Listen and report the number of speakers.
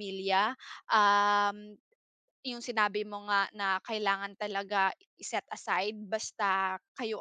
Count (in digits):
1